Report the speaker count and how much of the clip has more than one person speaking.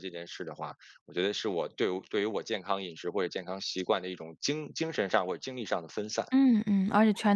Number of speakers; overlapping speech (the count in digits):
2, no overlap